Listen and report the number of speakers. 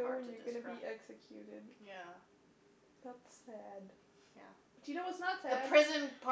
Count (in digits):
2